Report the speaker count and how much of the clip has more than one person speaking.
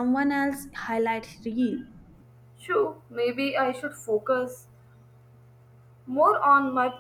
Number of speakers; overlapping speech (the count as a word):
two, no overlap